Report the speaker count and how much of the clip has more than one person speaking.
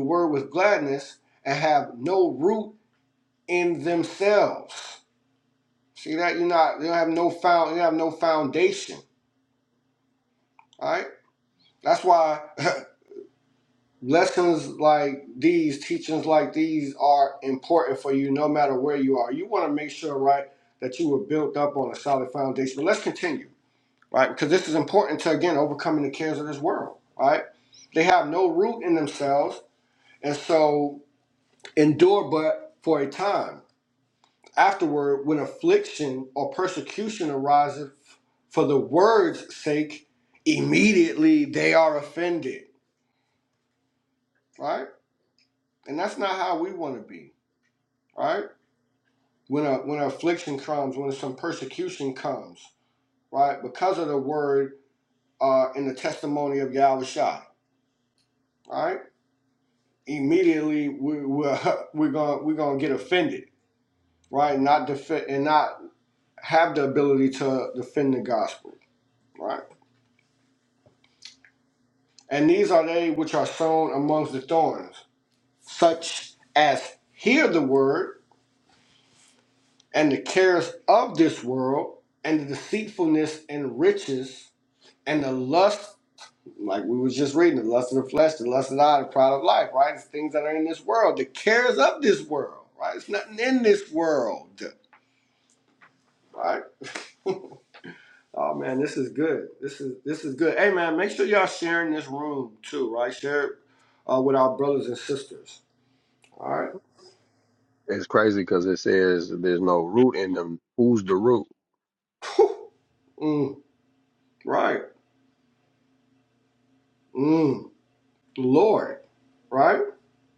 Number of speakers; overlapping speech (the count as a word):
two, no overlap